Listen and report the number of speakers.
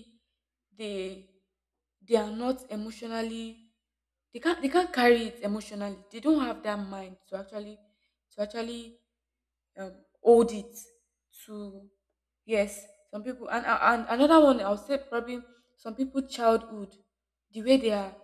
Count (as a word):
one